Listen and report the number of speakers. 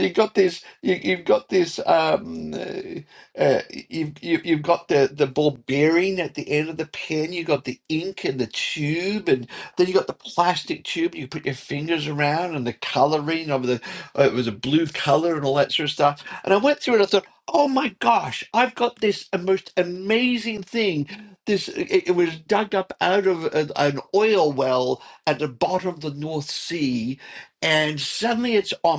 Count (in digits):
1